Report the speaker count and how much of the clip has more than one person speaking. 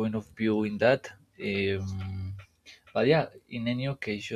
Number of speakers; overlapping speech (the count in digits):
1, no overlap